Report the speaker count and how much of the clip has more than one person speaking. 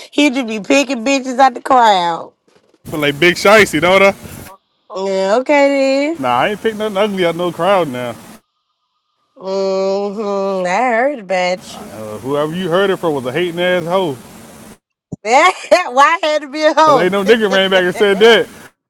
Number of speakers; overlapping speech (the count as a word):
two, about 1%